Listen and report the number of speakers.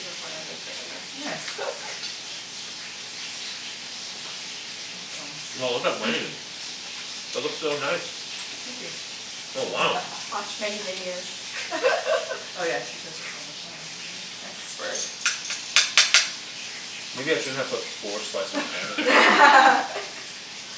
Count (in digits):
3